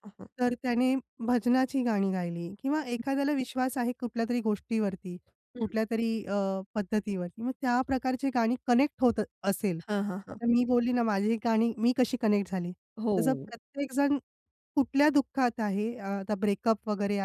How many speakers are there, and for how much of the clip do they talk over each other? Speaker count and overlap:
2, about 3%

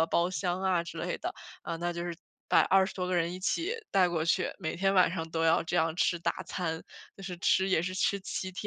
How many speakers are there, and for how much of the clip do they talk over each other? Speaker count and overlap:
1, no overlap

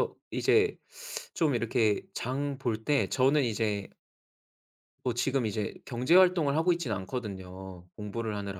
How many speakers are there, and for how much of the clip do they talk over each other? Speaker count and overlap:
1, no overlap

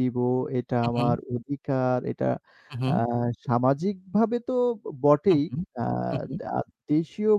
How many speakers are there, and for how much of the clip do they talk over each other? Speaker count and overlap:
2, about 11%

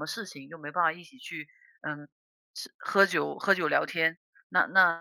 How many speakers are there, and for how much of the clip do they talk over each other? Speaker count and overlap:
1, no overlap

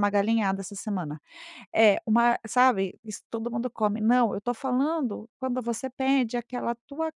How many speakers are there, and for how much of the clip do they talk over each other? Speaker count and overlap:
1, no overlap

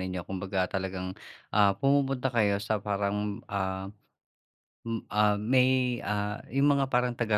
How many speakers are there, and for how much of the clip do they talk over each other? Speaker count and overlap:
1, no overlap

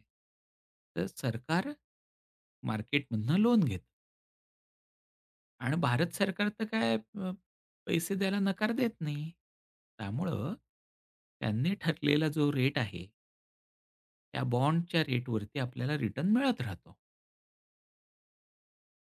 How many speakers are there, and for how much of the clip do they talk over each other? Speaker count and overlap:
1, no overlap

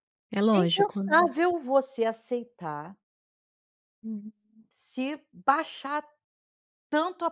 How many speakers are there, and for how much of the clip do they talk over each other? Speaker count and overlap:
2, about 10%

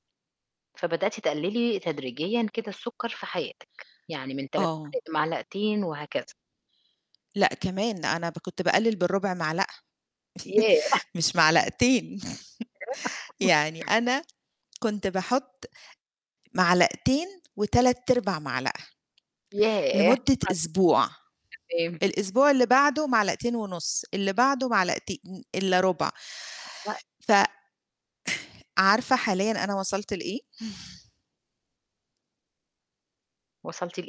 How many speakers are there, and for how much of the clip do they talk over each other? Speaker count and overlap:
2, about 1%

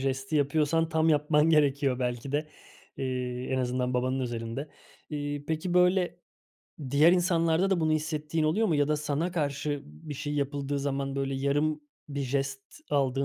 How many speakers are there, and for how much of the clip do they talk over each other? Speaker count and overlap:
1, no overlap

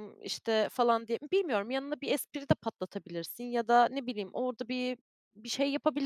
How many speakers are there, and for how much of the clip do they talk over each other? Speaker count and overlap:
1, no overlap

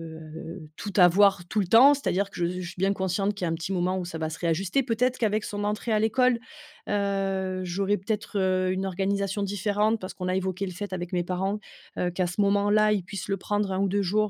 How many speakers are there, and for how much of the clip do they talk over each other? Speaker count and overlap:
1, no overlap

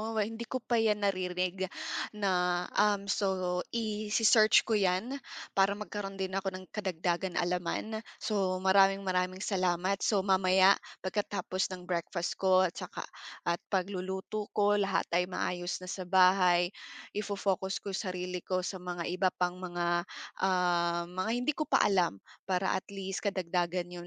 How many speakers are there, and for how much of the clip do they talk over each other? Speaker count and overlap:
1, no overlap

